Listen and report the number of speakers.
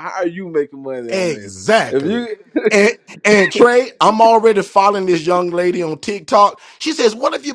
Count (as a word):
two